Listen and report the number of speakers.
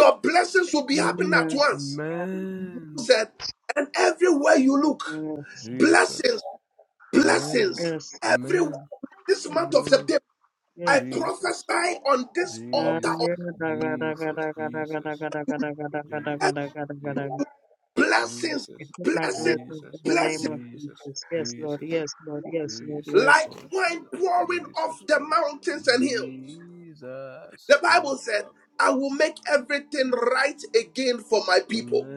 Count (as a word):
three